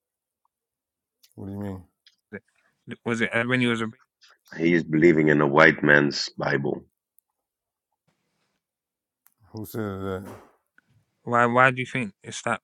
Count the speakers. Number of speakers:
3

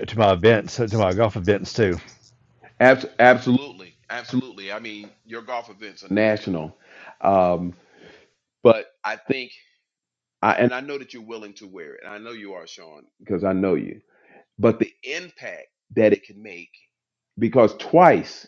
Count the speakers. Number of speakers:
2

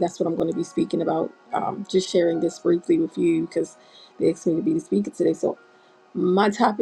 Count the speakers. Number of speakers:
1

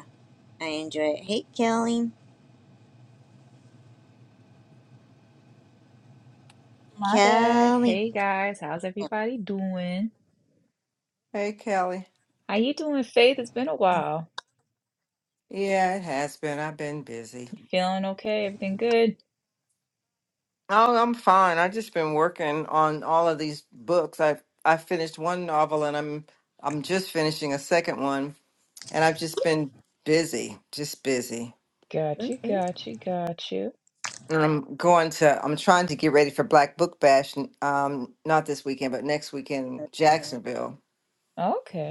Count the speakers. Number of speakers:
3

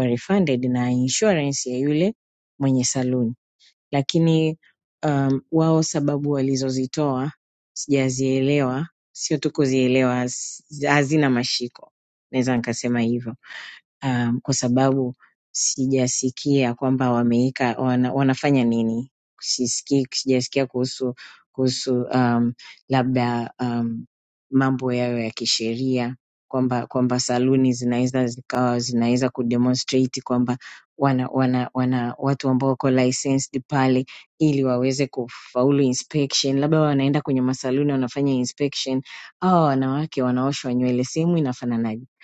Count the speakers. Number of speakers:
1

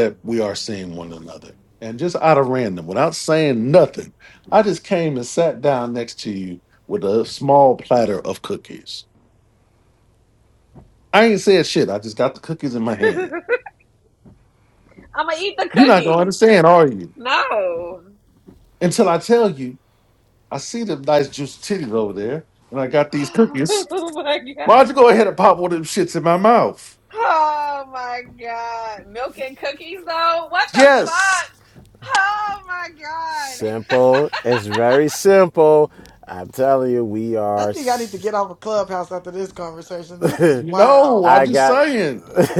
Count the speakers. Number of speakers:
4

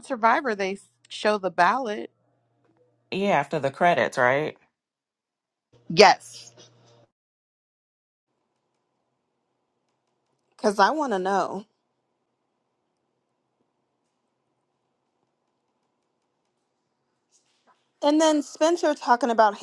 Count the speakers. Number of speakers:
3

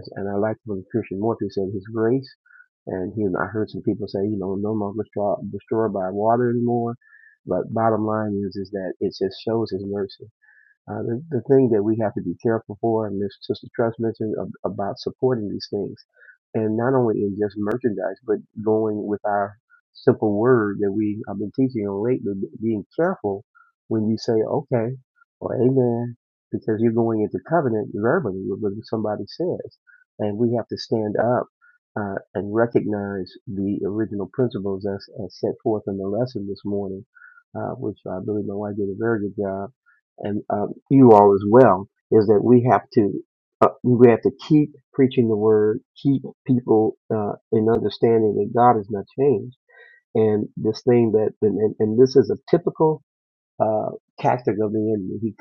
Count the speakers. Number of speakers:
1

